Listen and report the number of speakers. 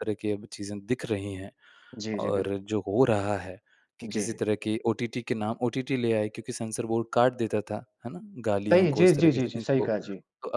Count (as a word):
two